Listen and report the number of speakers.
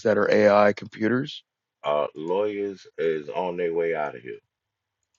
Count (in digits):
2